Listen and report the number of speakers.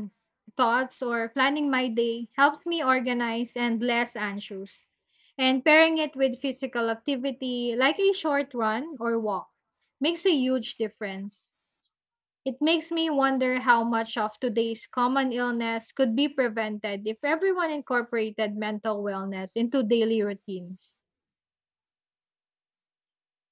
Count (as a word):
one